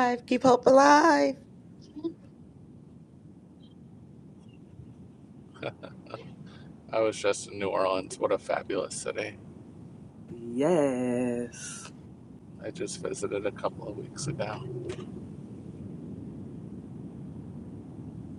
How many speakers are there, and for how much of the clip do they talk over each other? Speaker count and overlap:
3, no overlap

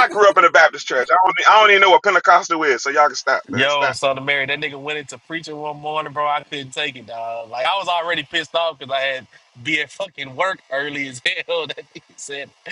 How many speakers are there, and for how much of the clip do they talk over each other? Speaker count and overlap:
2, about 4%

